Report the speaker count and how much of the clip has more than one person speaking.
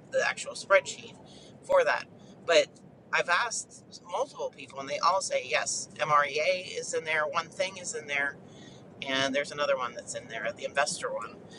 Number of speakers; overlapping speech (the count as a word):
one, no overlap